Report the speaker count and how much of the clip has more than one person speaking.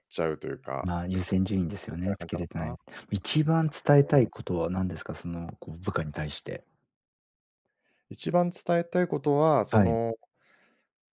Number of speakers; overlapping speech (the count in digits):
2, about 16%